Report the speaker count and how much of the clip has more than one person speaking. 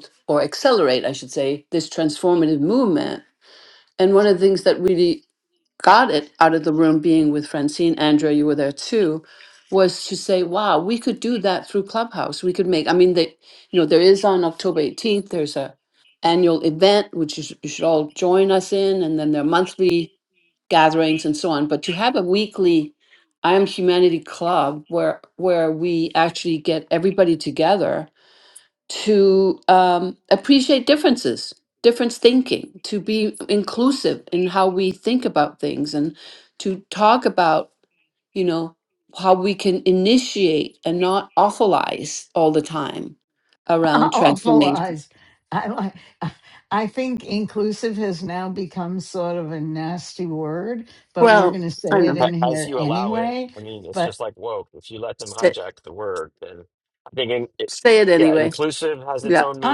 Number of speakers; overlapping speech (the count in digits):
3, about 7%